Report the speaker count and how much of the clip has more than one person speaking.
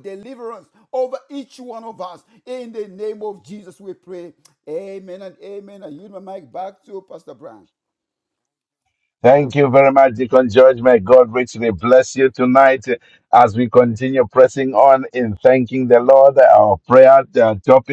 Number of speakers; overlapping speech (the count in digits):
2, no overlap